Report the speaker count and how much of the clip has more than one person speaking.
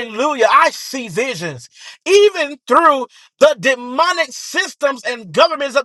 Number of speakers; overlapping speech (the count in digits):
1, no overlap